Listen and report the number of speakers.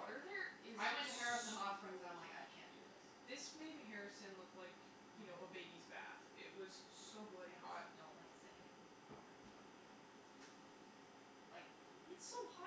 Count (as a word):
two